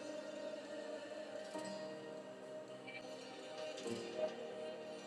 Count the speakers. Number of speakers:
zero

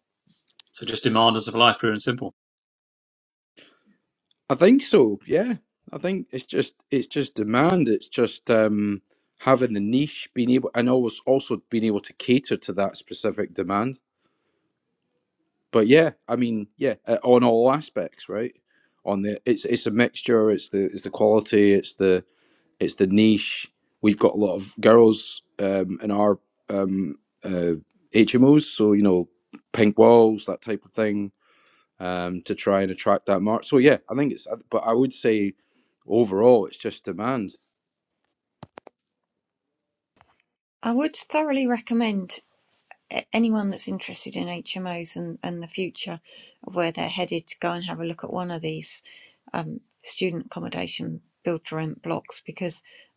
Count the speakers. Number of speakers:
three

